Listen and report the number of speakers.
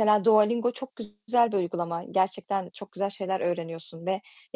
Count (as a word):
one